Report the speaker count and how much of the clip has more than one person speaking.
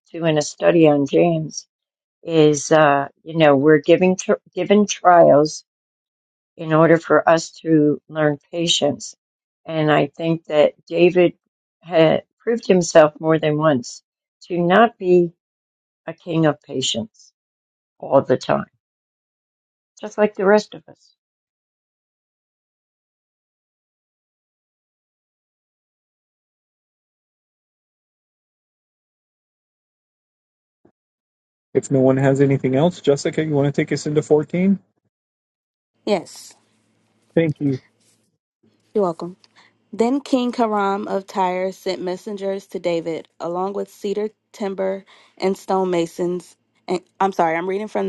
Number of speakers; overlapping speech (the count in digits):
3, no overlap